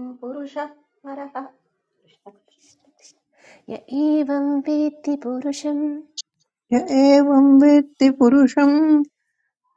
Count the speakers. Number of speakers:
3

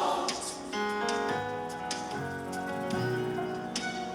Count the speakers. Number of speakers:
0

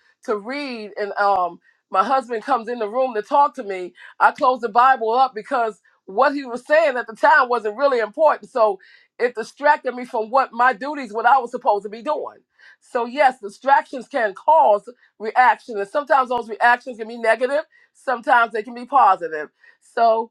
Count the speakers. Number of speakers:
1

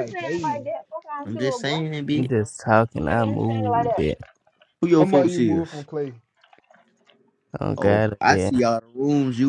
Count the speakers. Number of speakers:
4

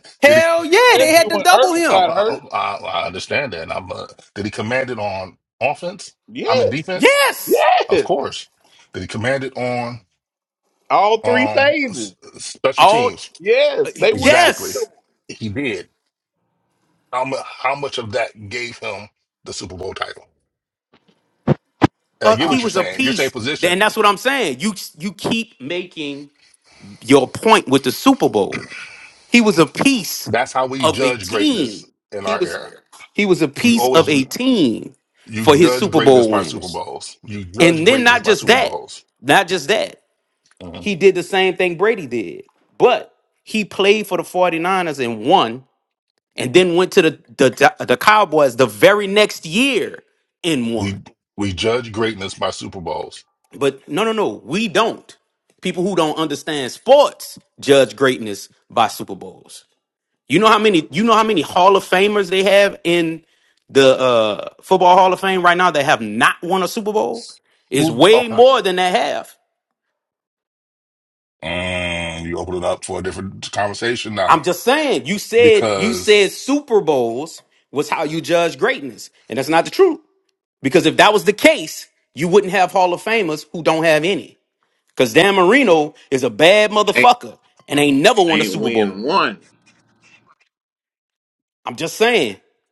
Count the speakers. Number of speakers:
3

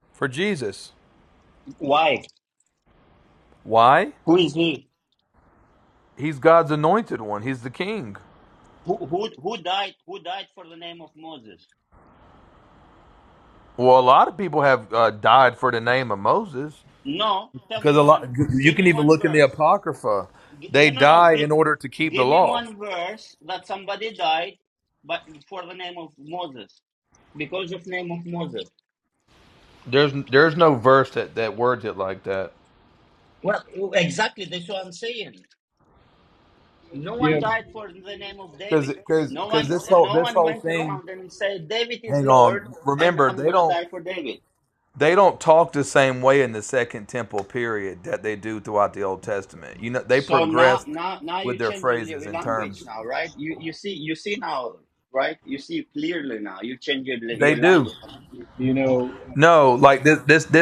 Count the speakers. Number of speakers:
3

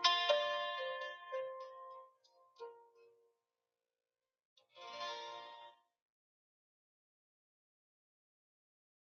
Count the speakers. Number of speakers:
0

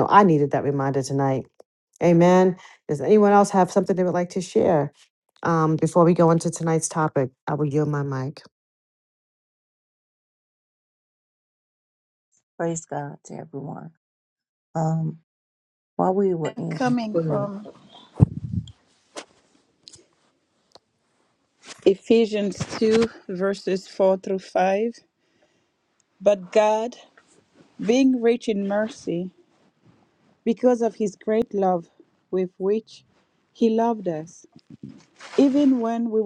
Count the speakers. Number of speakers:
3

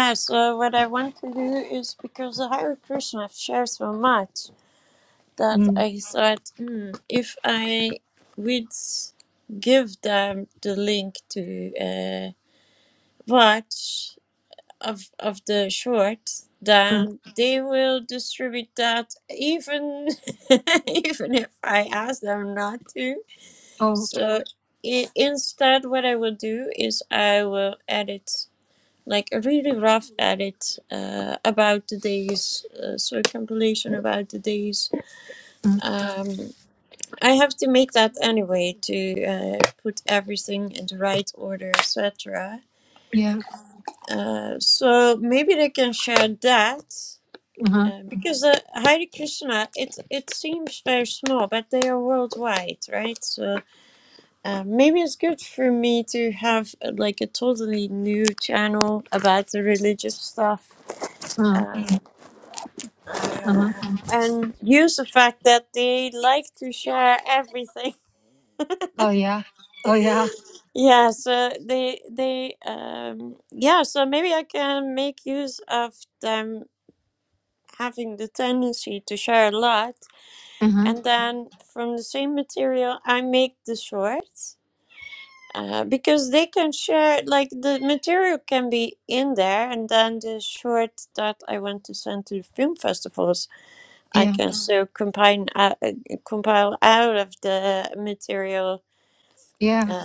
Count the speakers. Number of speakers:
2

